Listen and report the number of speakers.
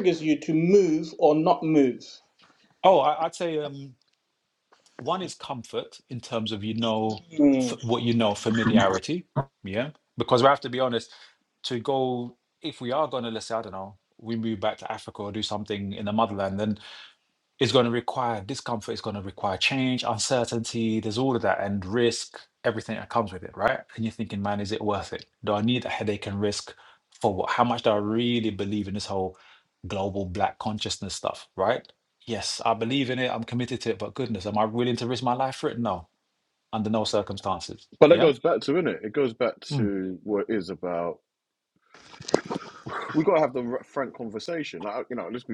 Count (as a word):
three